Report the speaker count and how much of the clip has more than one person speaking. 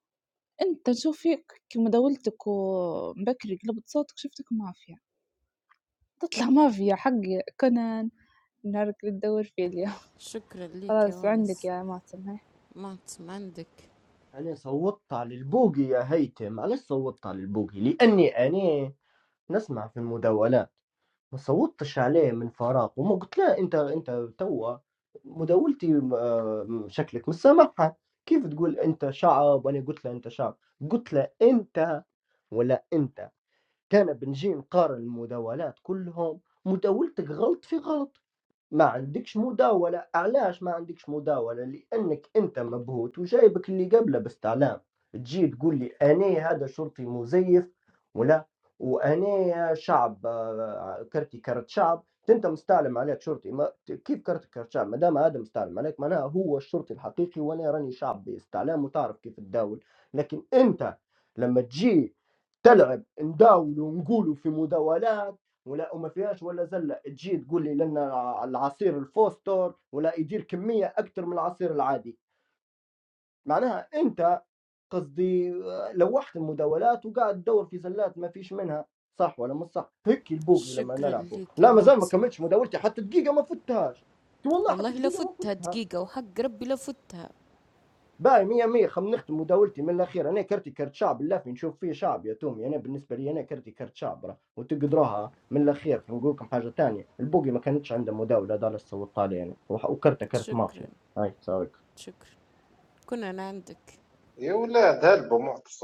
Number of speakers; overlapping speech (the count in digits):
4, about 4%